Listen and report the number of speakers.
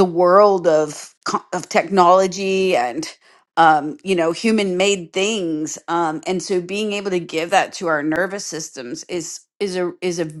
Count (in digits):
1